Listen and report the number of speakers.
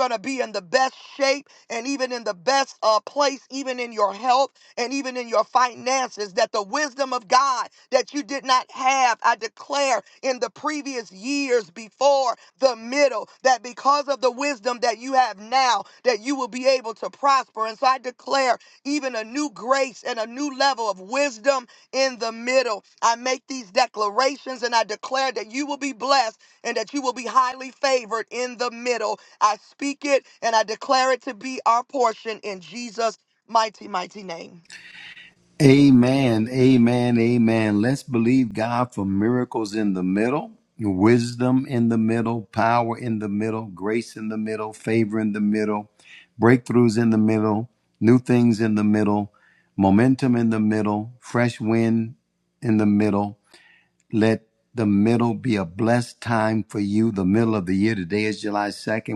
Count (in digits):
2